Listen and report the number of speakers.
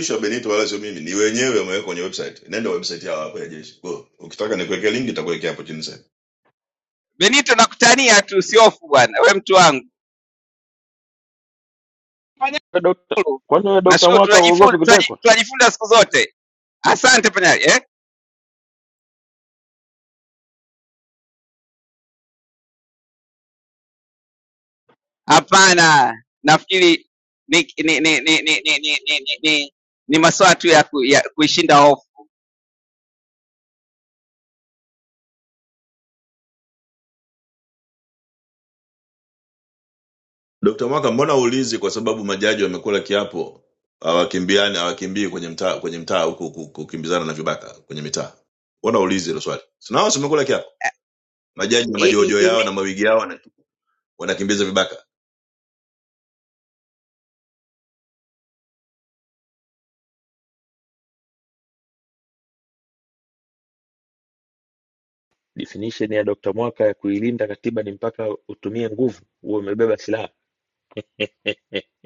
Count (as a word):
three